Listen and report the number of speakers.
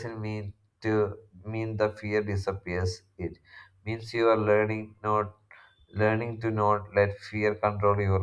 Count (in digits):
1